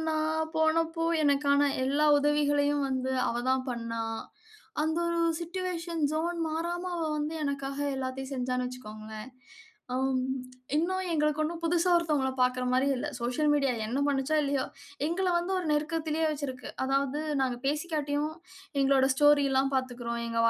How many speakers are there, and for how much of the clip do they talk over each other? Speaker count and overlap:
1, no overlap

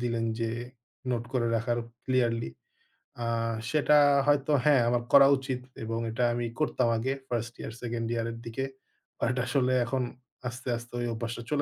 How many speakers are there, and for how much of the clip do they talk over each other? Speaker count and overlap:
1, no overlap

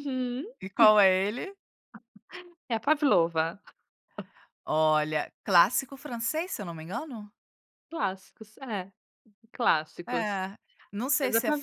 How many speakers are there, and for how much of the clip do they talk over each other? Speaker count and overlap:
2, about 5%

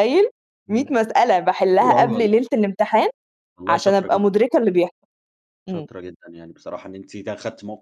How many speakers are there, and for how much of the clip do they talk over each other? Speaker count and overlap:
2, about 19%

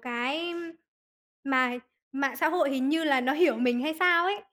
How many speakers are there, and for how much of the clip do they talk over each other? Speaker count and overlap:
1, no overlap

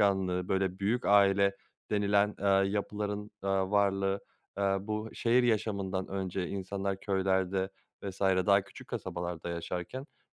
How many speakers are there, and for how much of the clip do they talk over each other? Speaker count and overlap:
1, no overlap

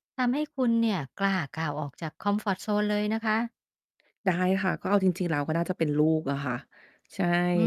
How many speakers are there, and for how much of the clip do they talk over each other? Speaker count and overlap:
2, no overlap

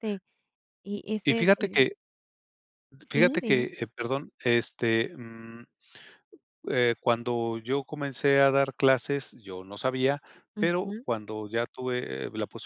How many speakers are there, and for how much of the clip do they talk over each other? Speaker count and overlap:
2, about 12%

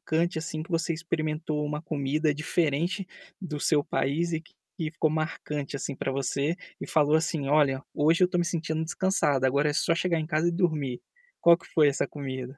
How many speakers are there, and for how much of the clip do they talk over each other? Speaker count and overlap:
1, no overlap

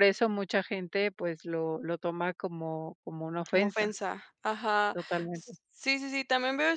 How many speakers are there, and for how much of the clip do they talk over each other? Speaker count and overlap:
2, about 7%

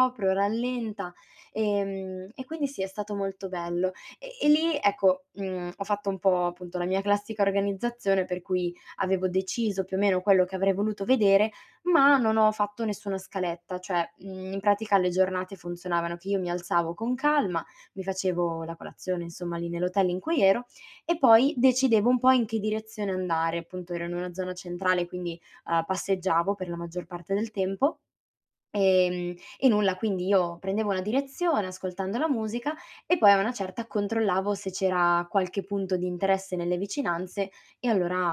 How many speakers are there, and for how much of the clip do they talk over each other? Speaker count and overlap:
1, no overlap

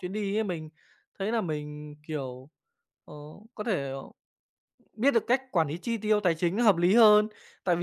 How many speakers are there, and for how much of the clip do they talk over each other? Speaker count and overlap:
1, no overlap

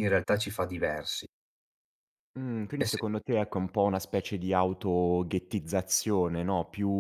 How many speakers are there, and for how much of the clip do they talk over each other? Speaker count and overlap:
2, about 3%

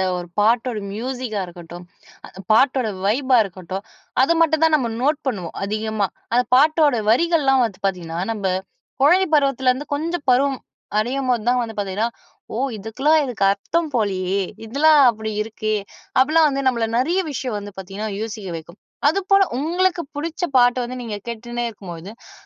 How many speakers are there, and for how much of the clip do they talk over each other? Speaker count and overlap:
1, no overlap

